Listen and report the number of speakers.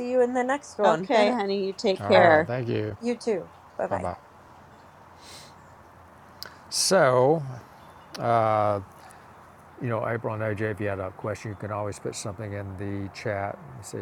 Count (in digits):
3